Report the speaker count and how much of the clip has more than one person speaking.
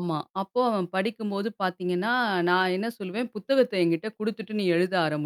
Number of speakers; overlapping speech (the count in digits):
1, no overlap